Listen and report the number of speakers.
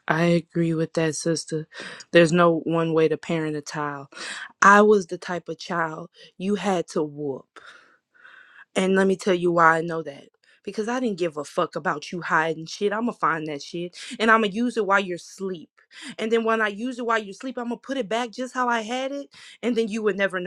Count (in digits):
1